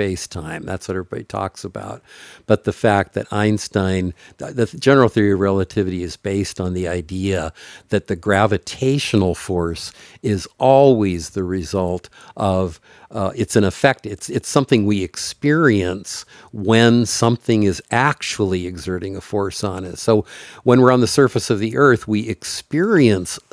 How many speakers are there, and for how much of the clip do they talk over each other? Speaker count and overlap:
one, no overlap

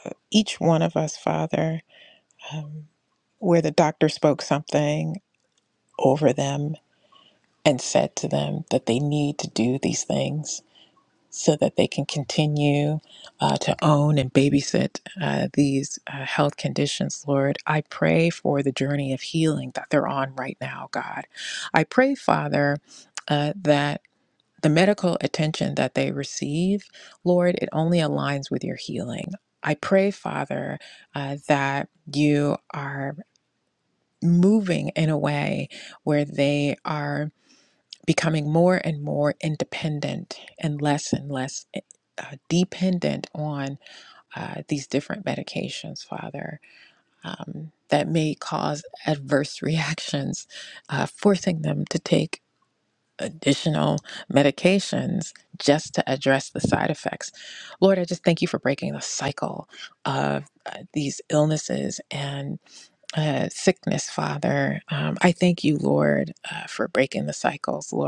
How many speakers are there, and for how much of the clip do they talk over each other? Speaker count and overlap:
one, no overlap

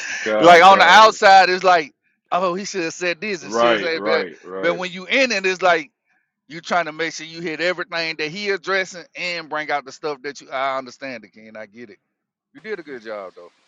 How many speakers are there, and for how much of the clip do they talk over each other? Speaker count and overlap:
two, about 14%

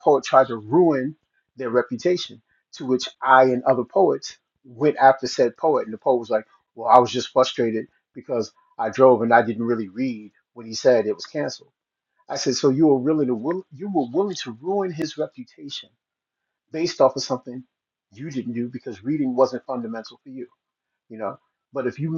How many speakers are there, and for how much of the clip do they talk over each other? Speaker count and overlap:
one, no overlap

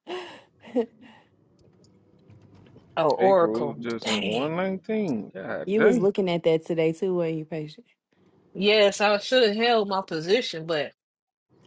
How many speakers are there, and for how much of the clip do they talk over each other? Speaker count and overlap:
three, about 15%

